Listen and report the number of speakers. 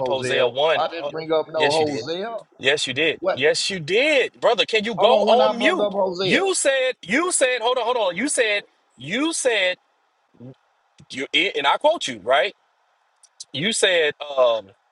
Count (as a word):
two